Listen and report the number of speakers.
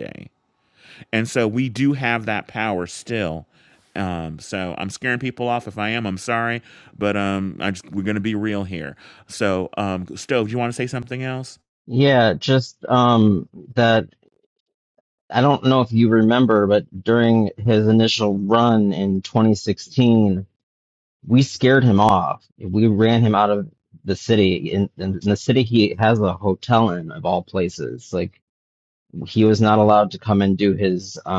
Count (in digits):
2